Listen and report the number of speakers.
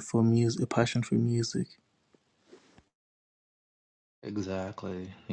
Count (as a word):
two